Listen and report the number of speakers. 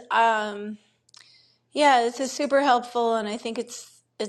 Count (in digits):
1